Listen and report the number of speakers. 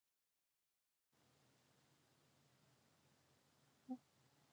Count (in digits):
0